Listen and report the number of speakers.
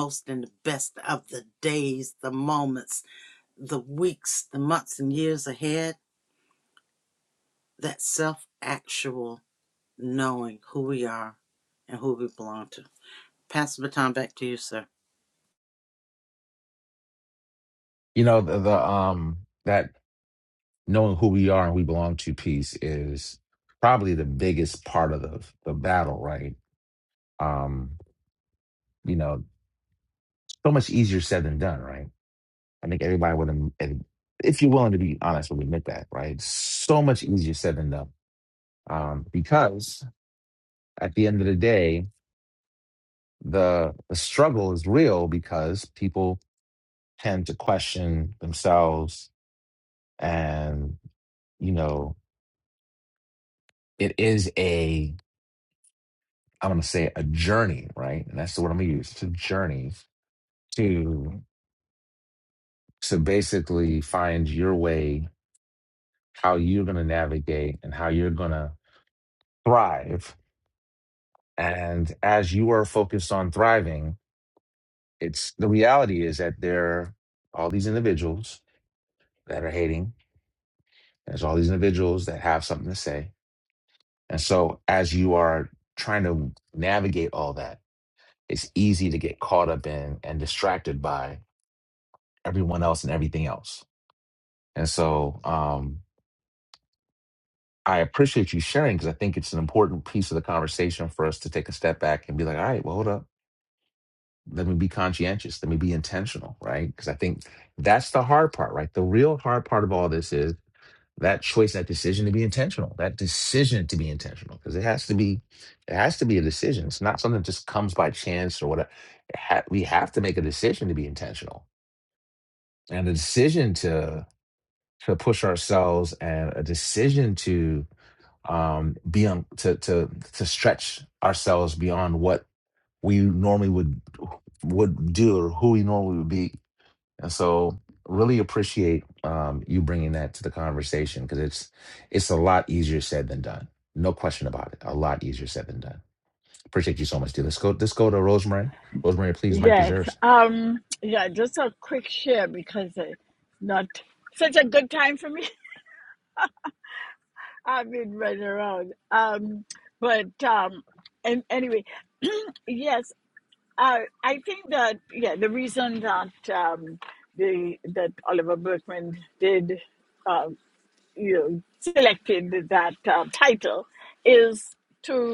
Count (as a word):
three